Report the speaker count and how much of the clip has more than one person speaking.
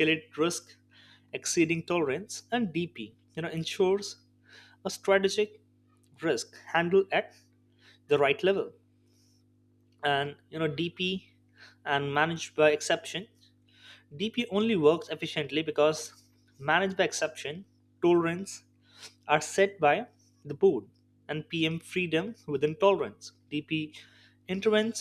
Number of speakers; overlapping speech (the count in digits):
1, no overlap